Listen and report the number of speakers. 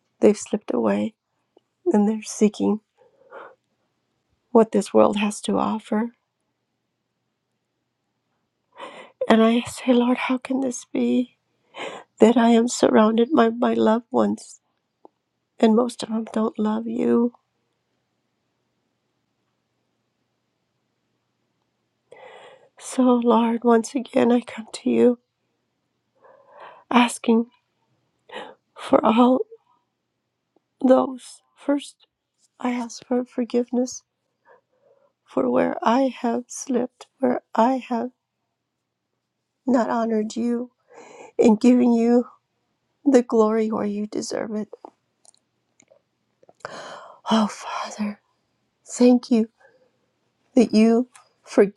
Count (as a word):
one